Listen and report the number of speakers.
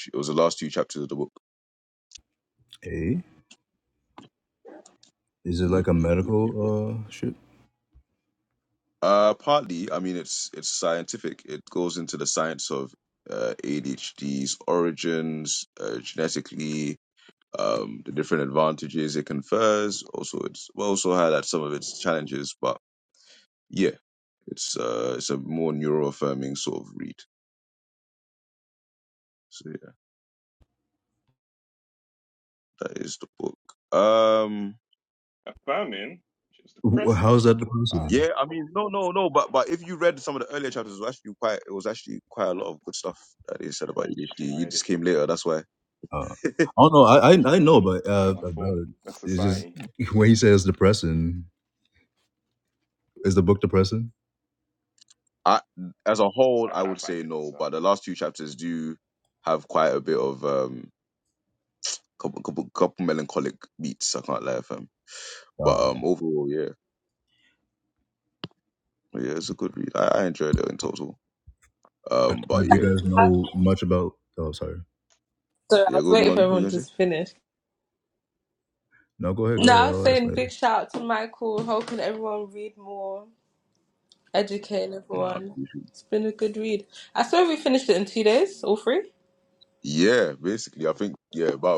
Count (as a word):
four